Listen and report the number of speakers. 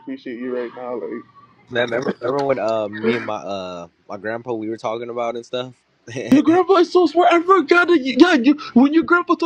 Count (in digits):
2